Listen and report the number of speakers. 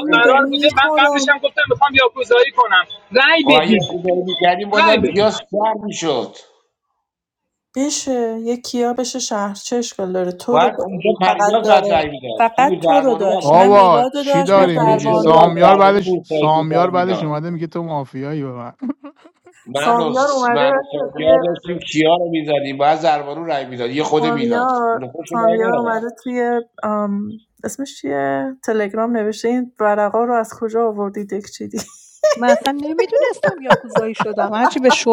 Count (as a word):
five